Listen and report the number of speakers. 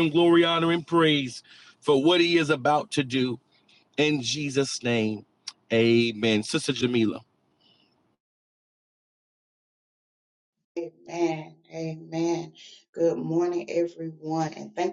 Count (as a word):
two